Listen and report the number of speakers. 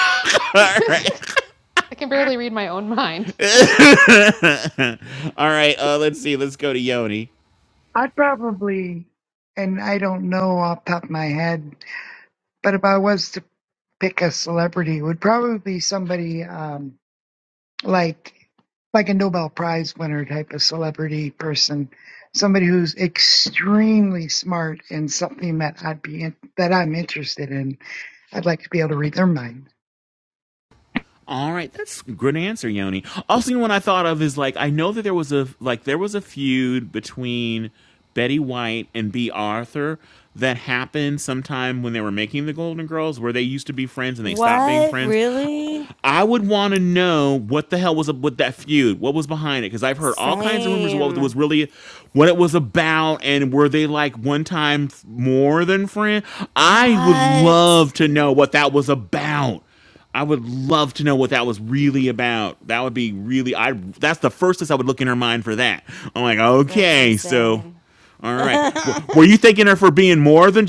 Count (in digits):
4